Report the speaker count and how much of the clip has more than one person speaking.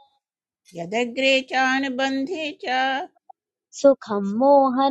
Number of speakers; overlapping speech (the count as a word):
two, no overlap